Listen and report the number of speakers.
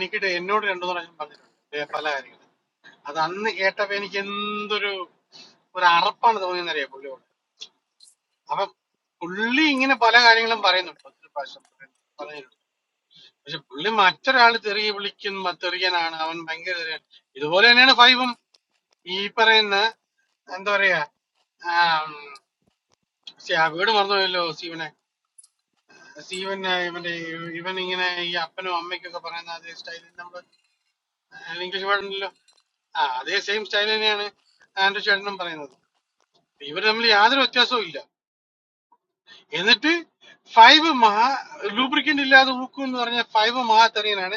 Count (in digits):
1